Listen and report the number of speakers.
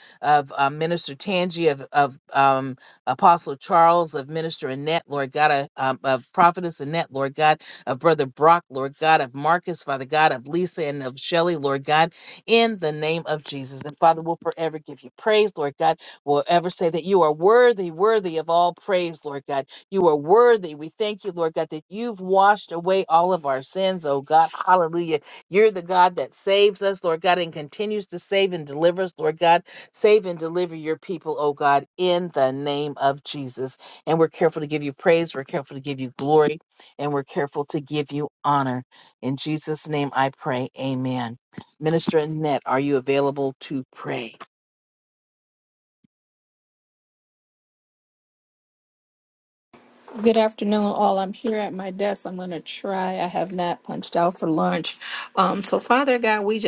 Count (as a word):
two